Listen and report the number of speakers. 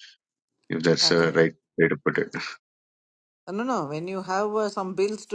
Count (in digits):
2